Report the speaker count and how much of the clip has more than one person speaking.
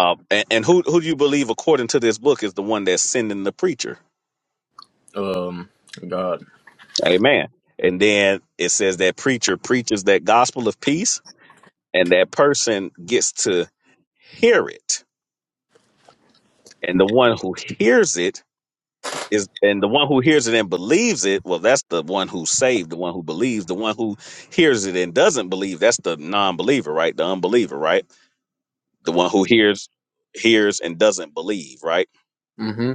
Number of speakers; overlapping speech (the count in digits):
2, no overlap